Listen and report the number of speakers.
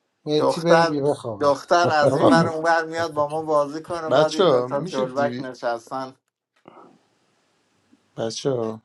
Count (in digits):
3